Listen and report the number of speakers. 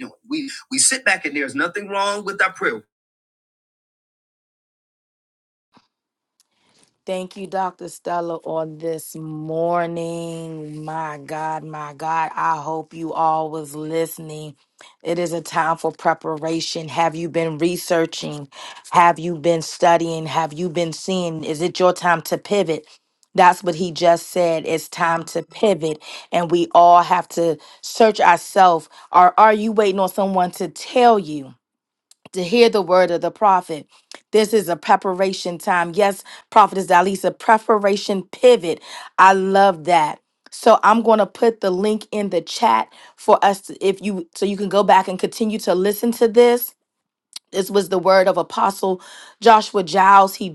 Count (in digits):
2